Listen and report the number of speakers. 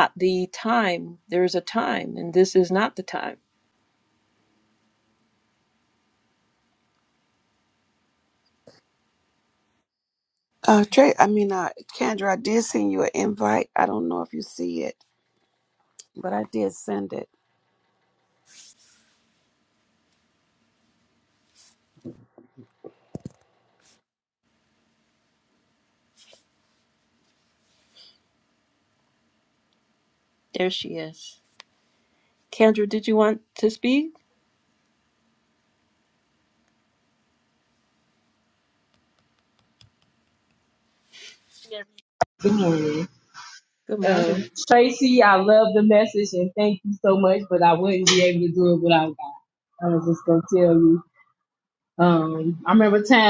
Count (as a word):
three